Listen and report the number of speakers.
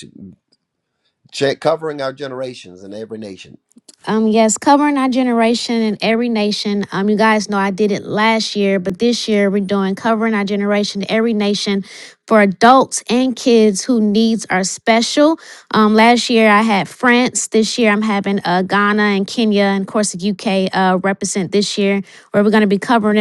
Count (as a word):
two